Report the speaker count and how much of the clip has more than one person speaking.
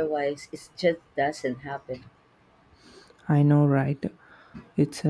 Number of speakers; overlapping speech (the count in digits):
2, no overlap